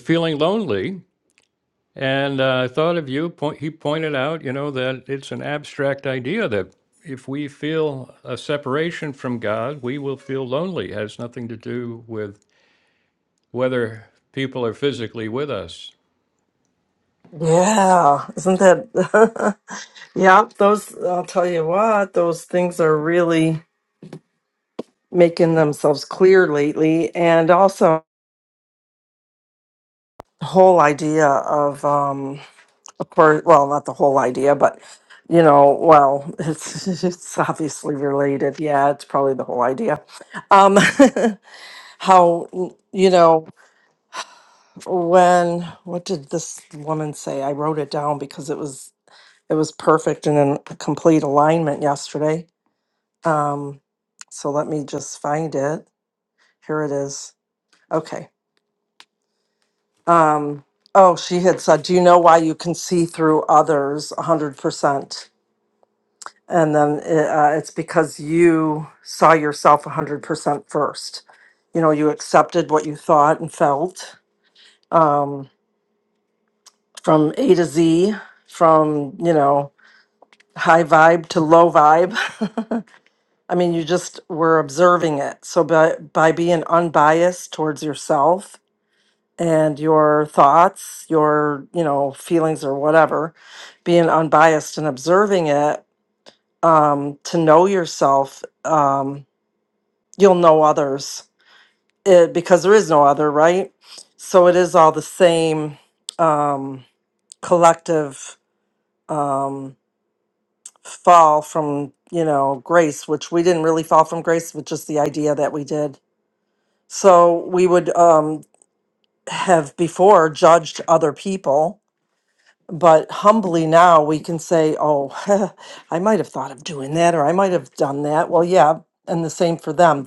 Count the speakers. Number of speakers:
2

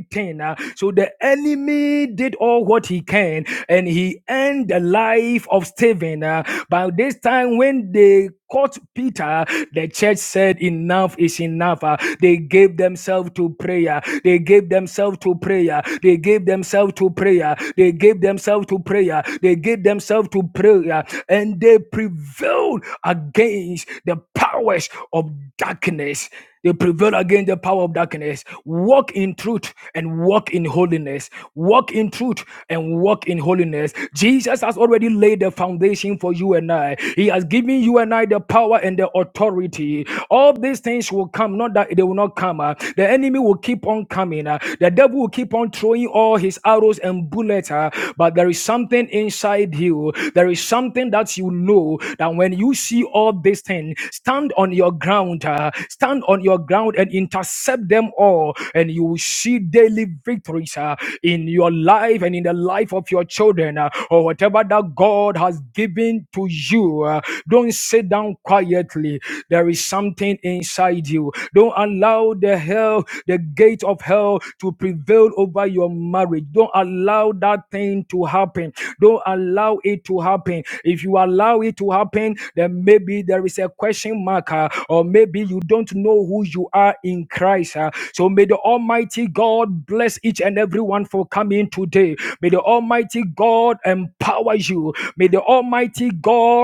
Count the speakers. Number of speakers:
1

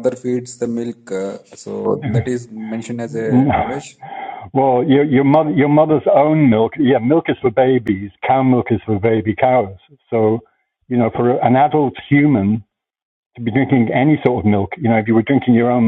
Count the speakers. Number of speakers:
2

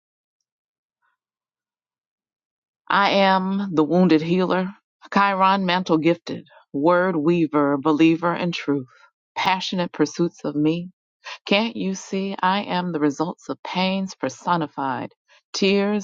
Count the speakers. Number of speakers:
1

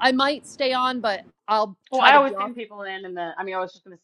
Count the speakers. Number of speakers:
2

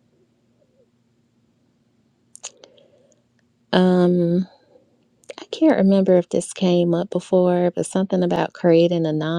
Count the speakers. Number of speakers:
1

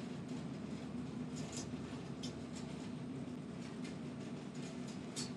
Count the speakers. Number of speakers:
0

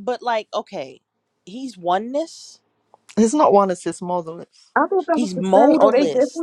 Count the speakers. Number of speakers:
3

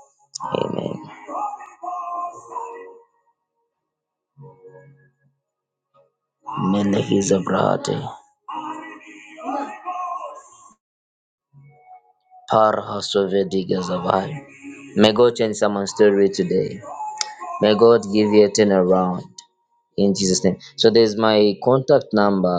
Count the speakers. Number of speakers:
1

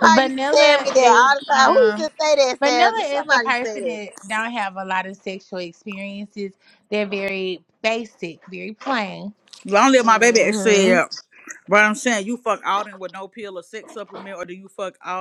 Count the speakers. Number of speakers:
3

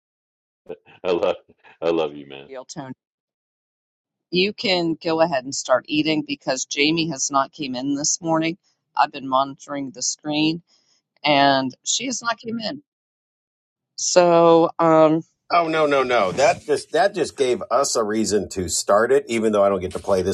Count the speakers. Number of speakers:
3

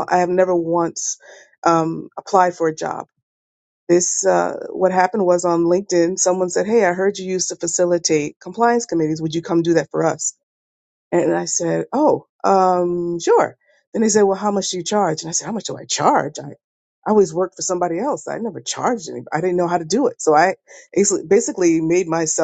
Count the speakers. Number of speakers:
1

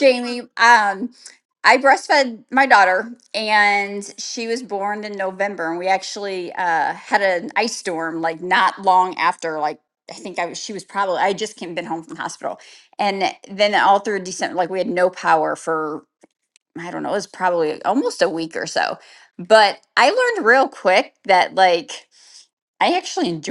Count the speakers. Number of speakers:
1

